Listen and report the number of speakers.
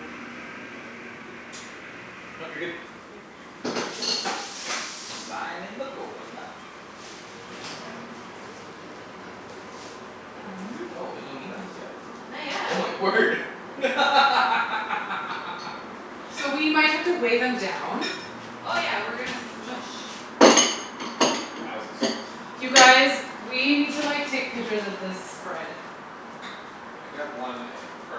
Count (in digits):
4